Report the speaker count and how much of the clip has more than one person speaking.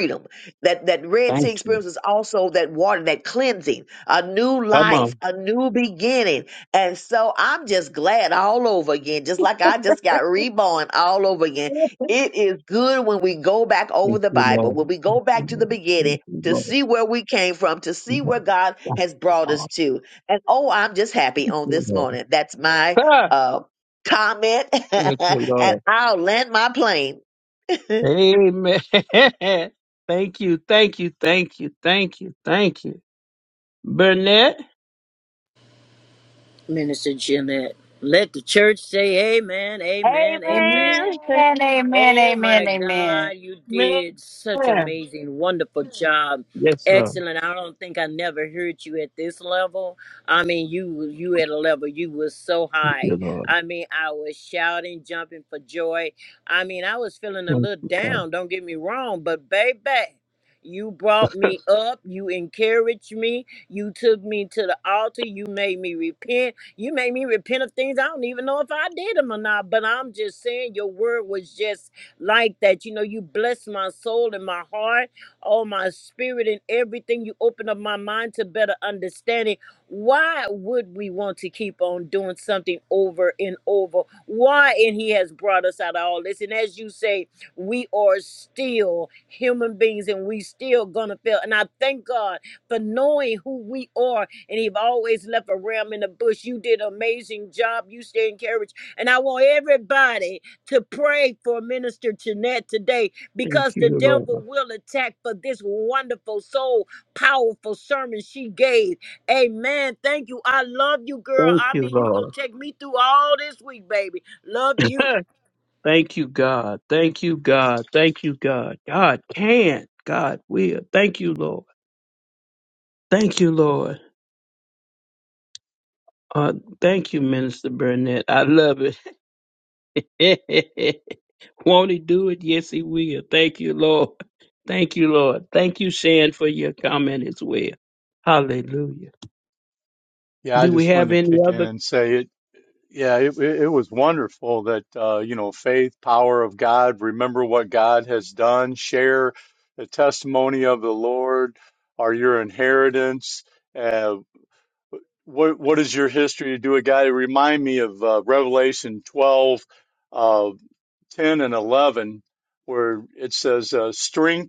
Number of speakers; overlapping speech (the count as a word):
five, about 7%